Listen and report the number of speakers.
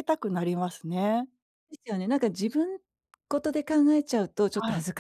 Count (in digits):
2